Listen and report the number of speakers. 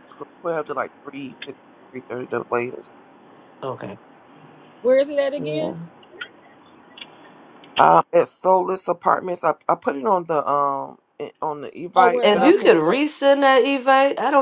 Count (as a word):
three